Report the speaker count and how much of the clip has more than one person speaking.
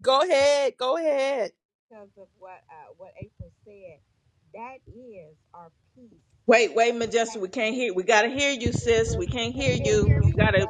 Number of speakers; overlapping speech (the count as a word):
three, no overlap